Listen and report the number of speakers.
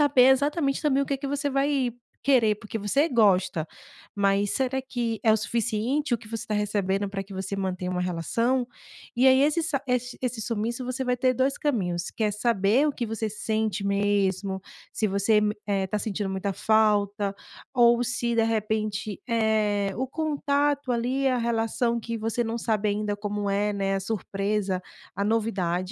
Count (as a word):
one